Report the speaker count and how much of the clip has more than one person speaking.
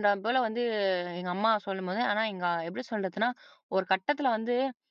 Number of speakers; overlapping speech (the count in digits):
1, no overlap